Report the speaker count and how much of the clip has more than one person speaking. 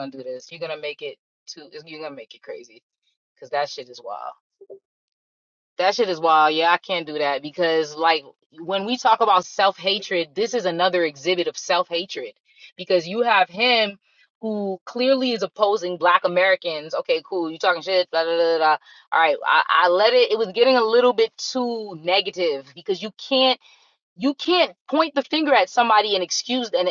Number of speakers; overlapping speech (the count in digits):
1, no overlap